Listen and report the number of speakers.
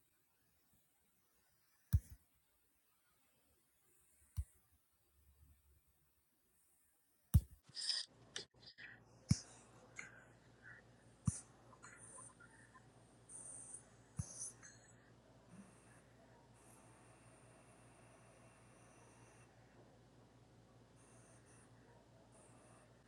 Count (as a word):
zero